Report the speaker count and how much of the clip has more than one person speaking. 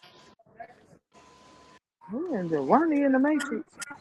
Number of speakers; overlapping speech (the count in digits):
1, no overlap